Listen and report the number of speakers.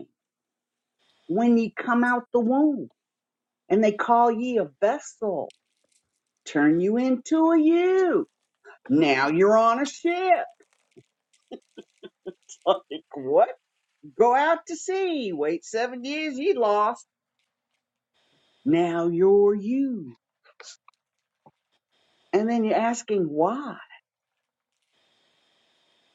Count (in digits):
1